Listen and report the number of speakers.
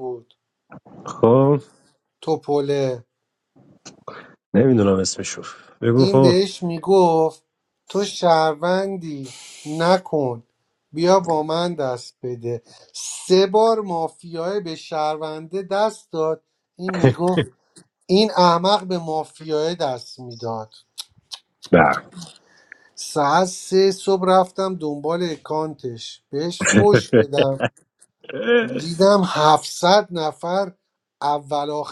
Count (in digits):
2